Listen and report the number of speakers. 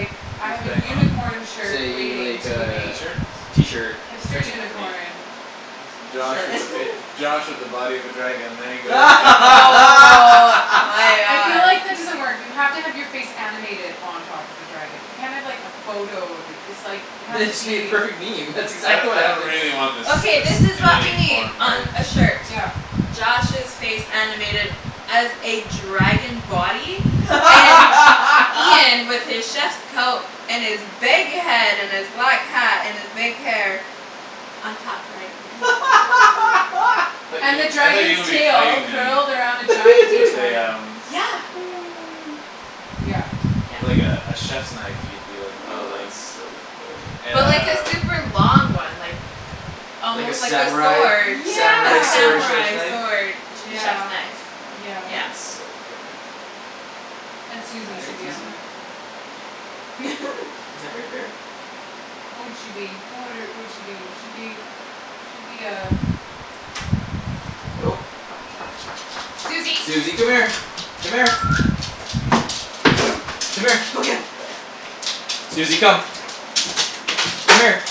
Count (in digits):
4